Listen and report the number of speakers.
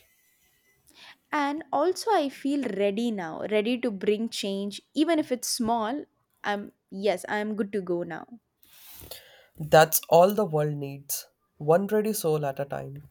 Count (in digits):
2